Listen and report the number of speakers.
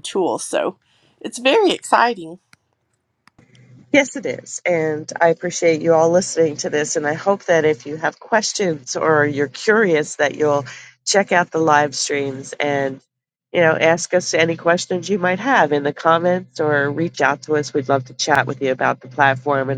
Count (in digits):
2